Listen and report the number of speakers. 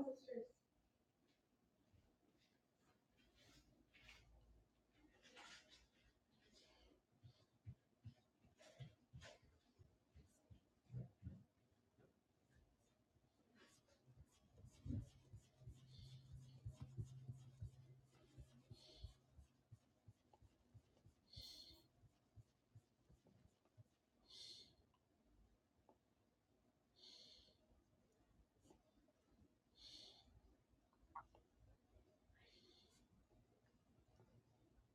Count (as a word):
zero